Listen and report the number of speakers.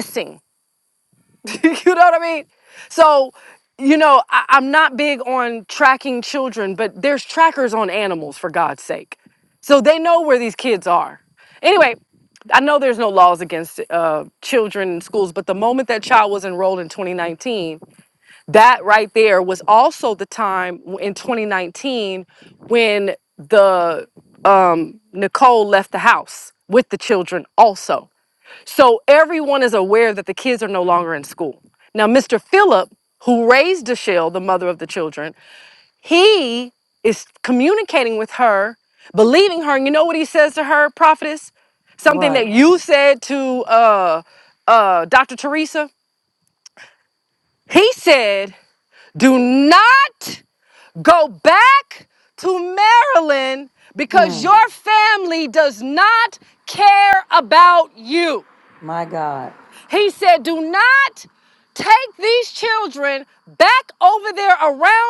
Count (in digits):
2